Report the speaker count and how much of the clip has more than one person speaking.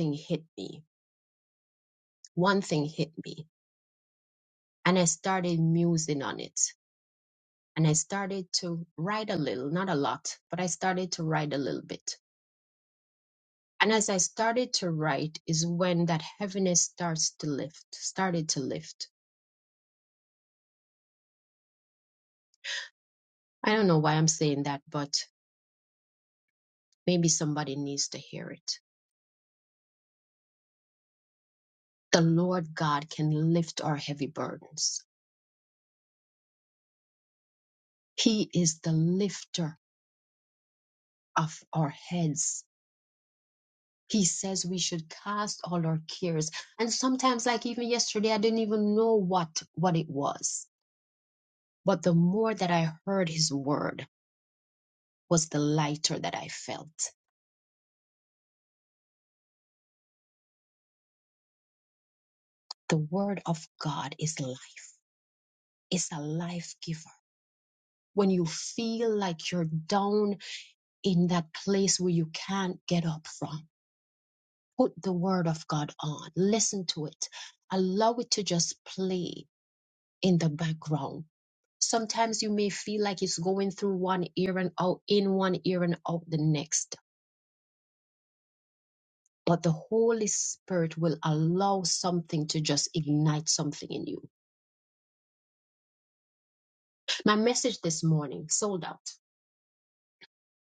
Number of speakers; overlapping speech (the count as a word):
one, no overlap